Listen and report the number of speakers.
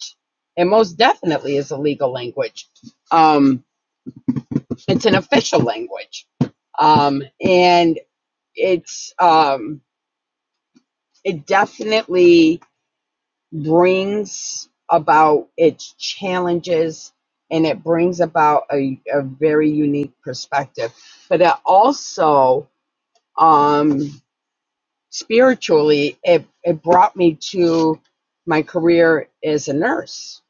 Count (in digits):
1